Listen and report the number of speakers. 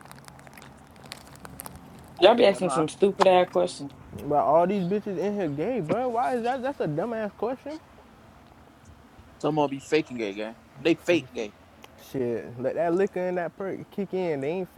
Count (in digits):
3